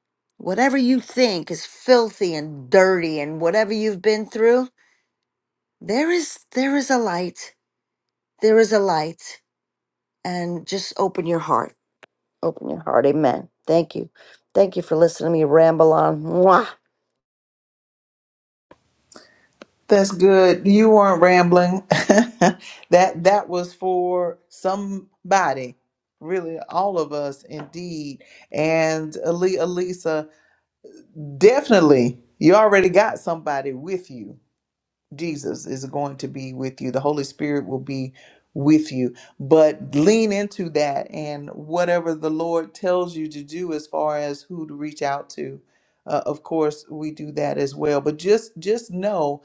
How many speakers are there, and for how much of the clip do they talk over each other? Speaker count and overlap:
2, no overlap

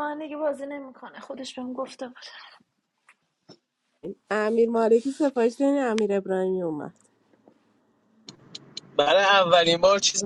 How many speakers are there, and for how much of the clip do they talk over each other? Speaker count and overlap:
3, no overlap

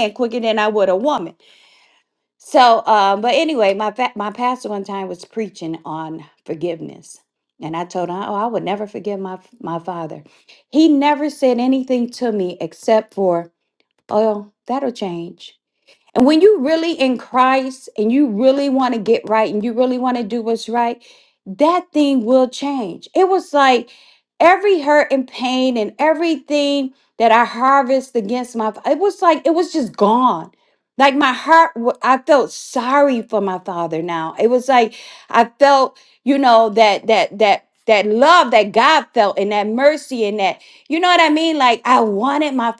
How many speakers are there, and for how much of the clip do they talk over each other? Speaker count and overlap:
1, no overlap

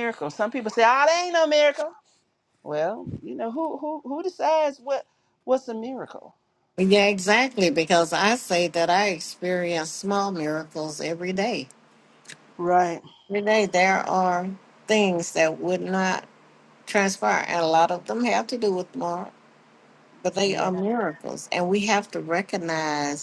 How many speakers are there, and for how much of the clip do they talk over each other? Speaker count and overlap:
2, about 1%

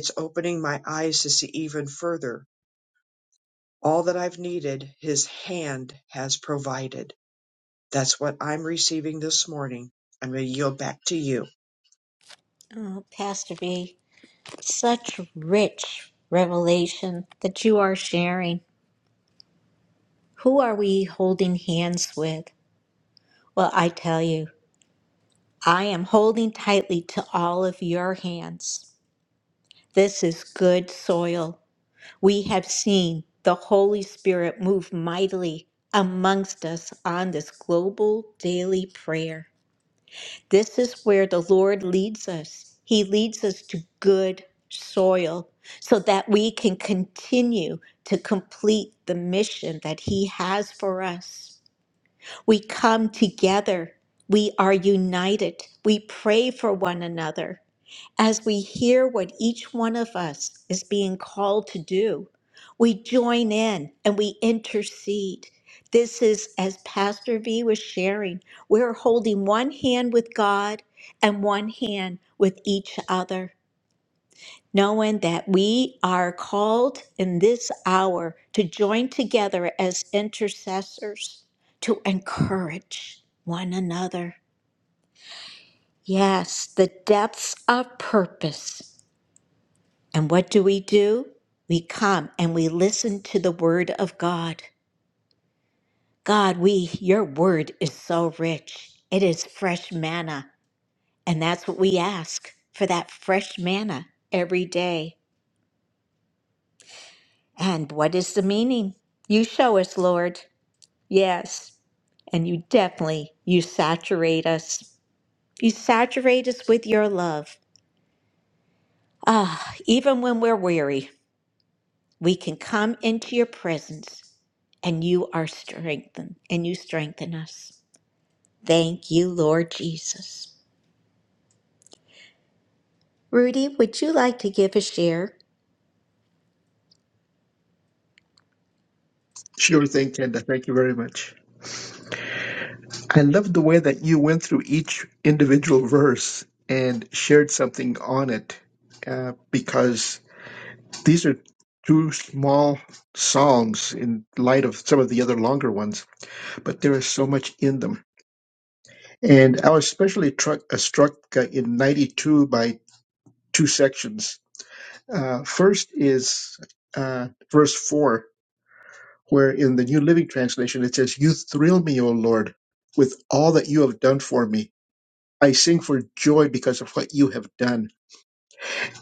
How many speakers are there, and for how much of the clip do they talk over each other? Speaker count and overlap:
3, no overlap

